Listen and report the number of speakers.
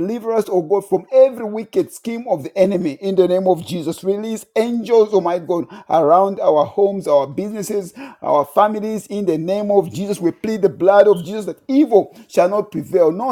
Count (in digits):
1